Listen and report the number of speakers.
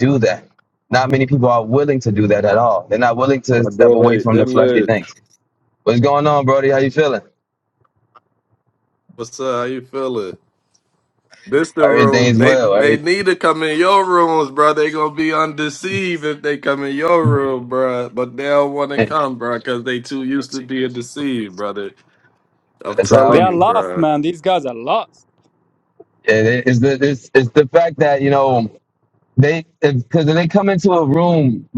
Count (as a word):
three